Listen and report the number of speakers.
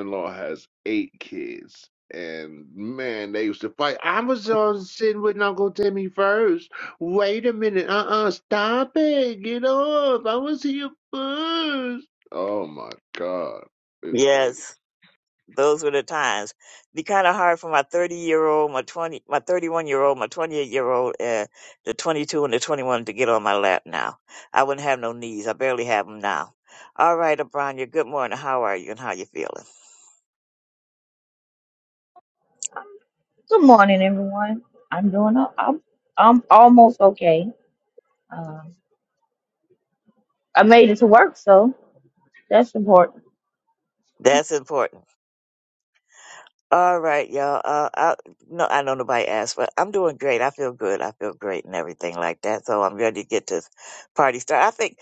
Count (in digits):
3